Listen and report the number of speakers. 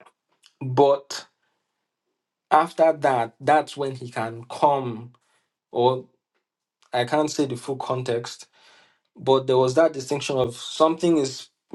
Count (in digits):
1